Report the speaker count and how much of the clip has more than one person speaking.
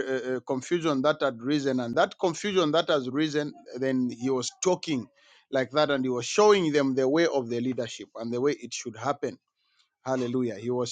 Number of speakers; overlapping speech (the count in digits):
1, no overlap